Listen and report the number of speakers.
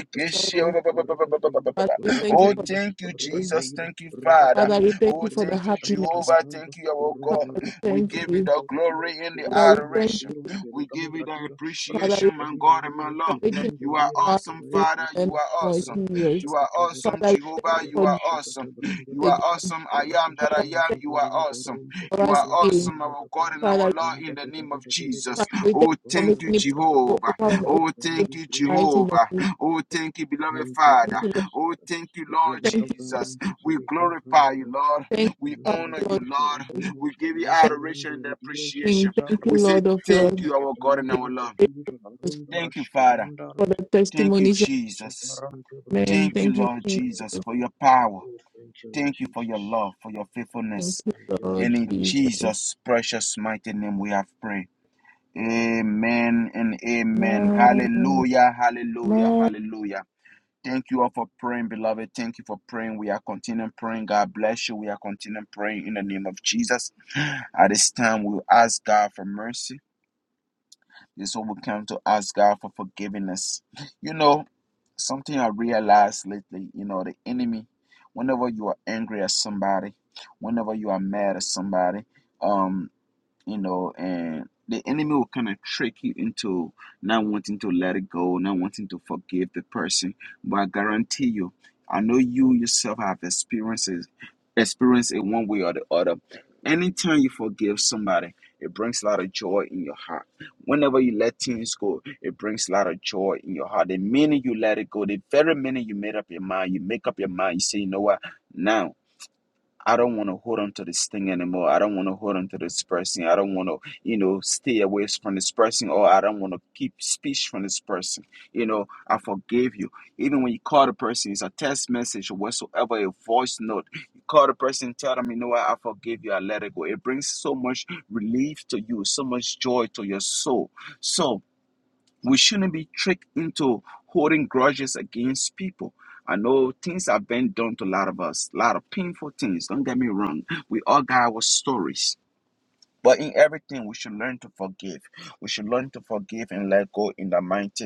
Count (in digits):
3